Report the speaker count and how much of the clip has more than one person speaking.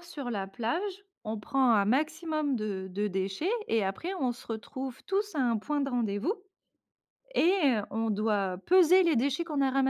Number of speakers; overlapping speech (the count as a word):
one, no overlap